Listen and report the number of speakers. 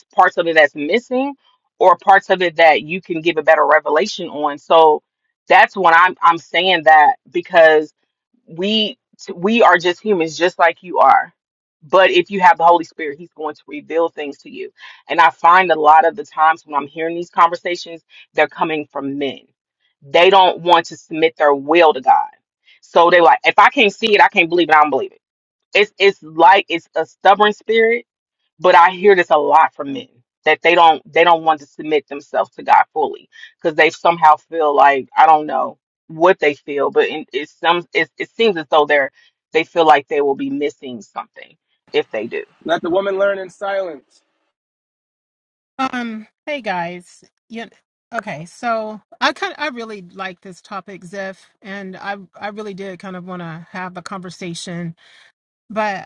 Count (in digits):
3